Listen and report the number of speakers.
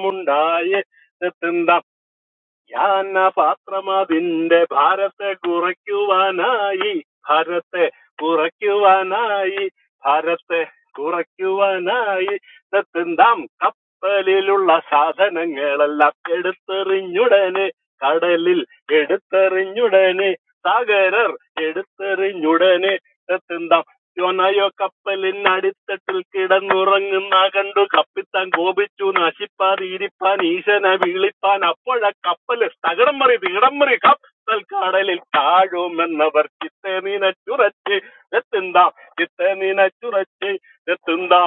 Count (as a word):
one